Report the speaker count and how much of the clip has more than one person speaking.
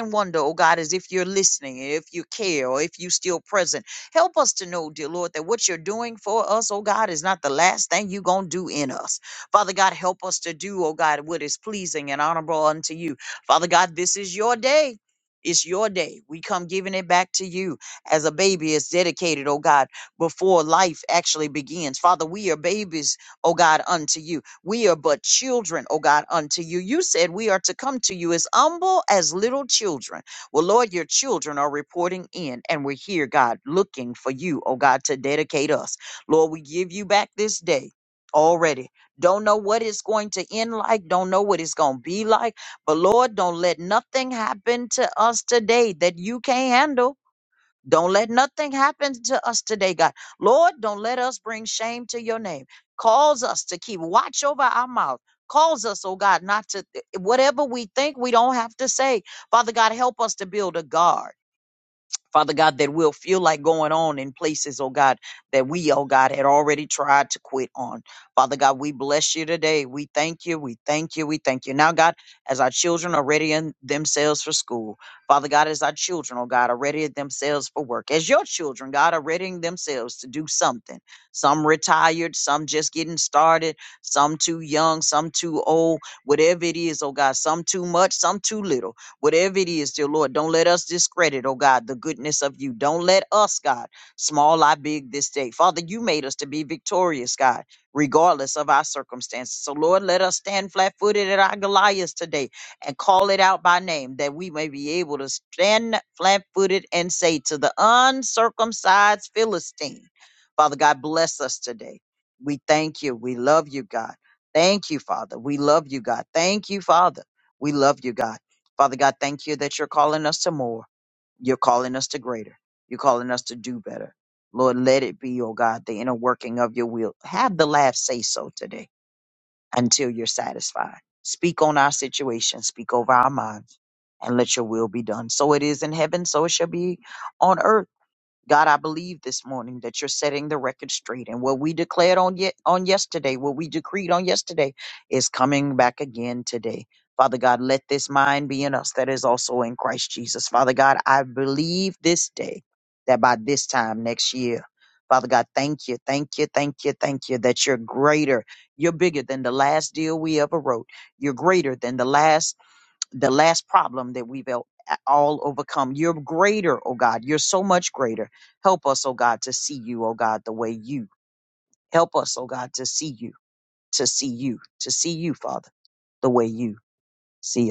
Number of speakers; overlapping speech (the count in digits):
1, no overlap